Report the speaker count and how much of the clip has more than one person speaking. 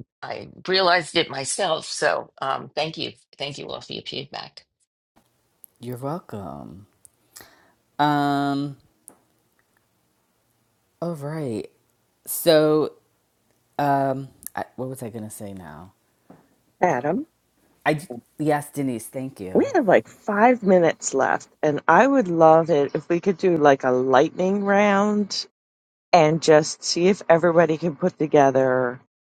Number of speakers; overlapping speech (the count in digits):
3, about 1%